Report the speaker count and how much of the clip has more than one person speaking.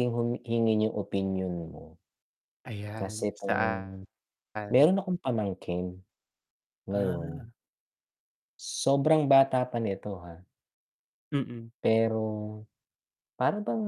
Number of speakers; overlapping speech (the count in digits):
2, about 8%